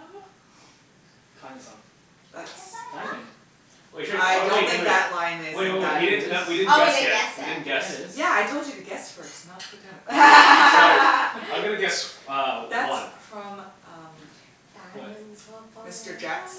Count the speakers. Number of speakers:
four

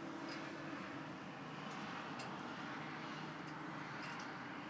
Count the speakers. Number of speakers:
zero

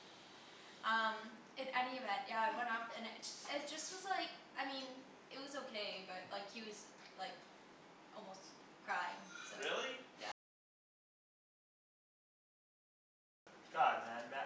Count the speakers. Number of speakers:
two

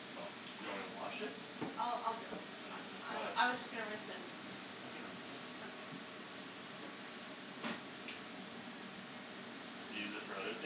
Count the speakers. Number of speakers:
two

